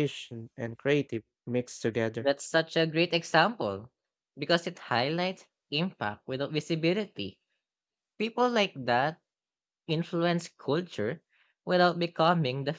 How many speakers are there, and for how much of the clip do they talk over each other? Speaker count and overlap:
two, under 1%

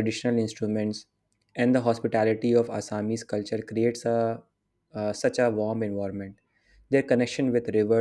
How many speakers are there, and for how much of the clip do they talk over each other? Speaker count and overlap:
one, no overlap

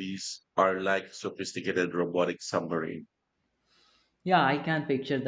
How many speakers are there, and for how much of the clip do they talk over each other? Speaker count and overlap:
two, no overlap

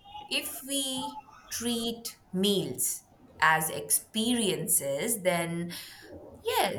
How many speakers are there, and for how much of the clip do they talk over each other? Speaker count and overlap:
one, no overlap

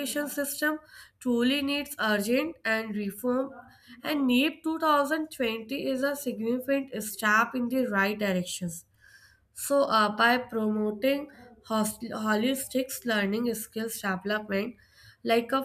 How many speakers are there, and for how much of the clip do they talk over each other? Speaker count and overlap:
one, no overlap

